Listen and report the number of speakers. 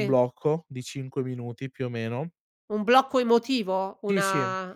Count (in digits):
2